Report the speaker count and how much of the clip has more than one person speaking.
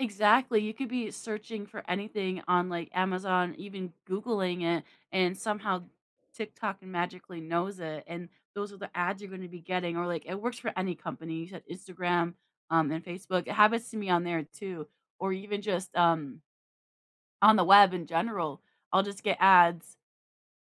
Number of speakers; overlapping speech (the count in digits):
1, no overlap